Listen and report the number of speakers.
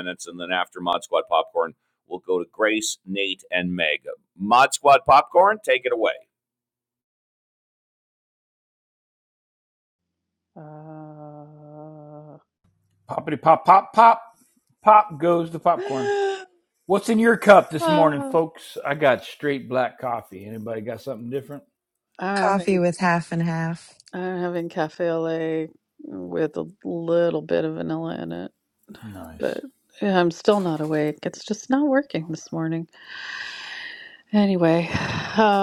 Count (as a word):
four